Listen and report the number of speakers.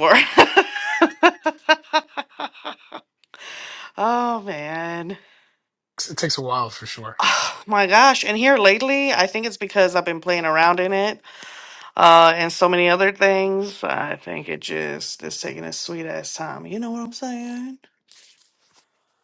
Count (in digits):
2